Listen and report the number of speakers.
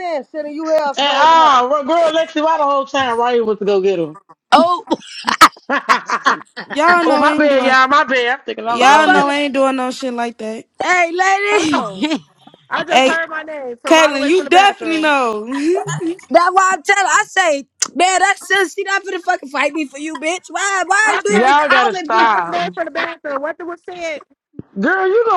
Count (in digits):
5